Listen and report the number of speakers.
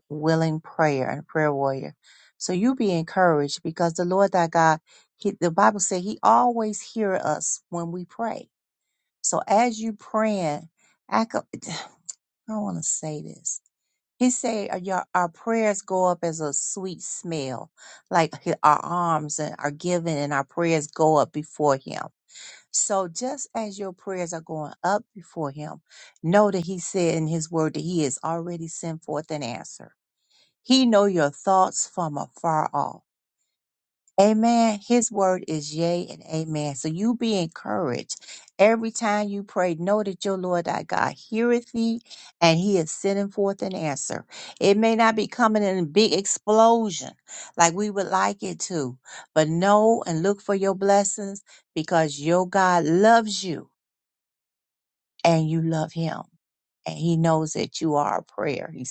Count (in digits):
1